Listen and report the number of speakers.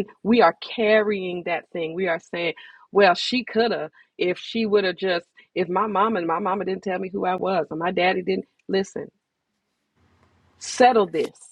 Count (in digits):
1